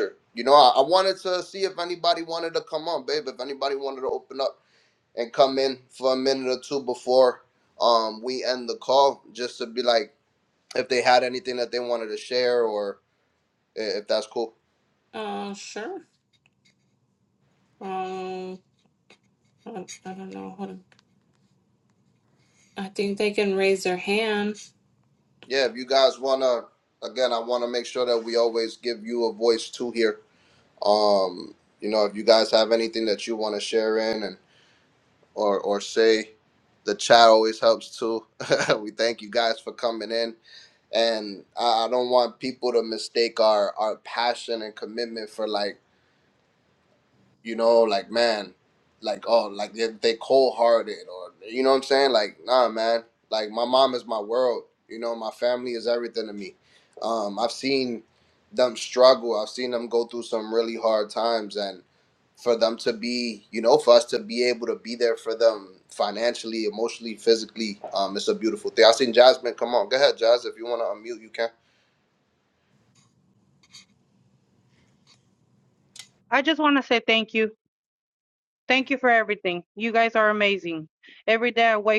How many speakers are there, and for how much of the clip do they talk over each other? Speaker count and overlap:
three, no overlap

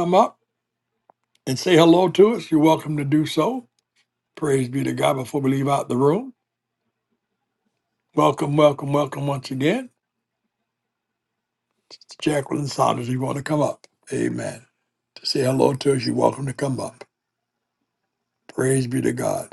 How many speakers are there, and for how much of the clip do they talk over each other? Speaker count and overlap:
one, no overlap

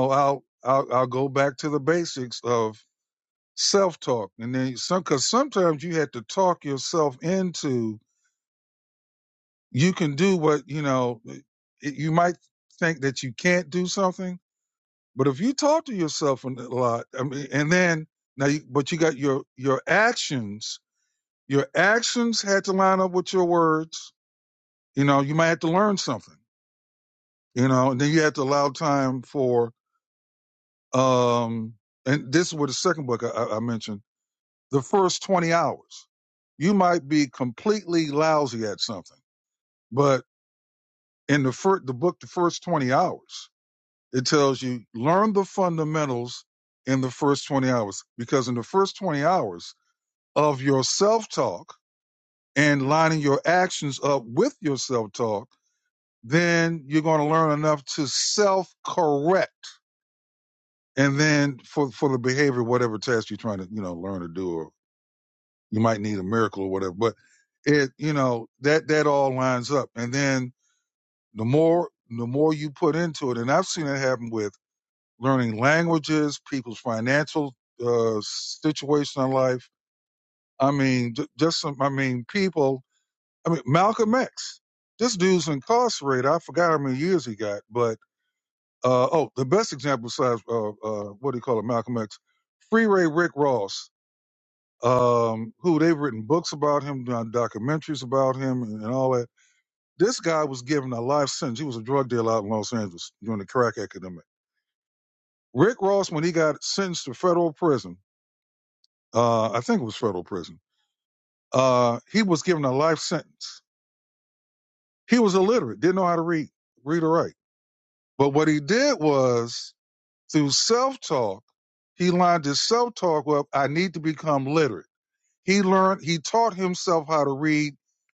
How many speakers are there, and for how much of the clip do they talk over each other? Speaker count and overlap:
one, no overlap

